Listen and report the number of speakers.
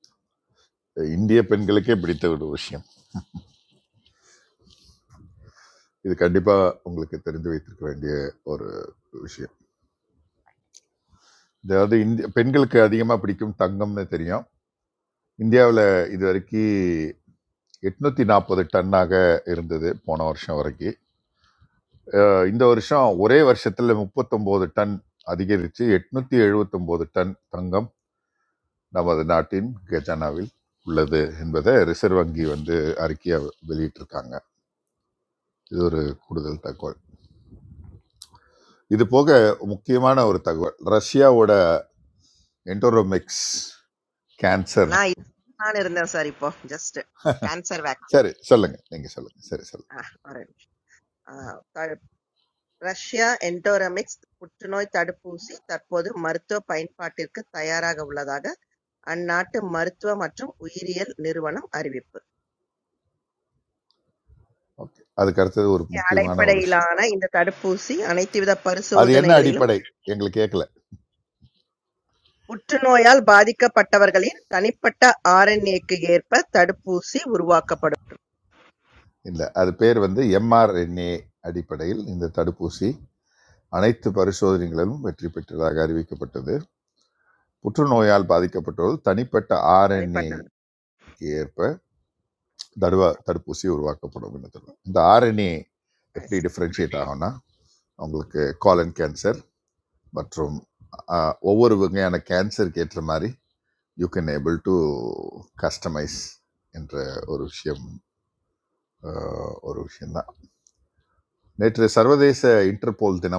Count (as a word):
two